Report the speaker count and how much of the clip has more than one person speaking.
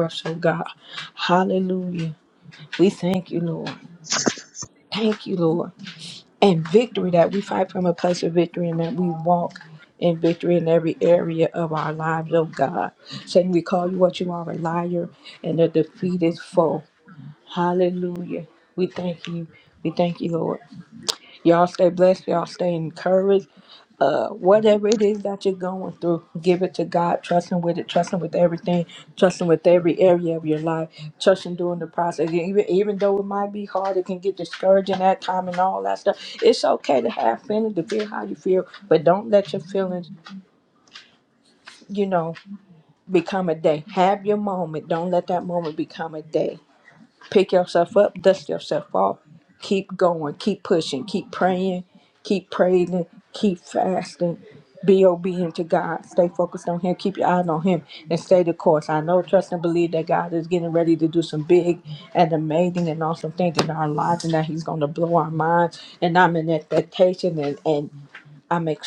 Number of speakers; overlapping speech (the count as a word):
one, no overlap